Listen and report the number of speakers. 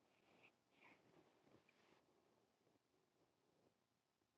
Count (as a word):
zero